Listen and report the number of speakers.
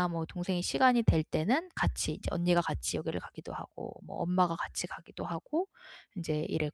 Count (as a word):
one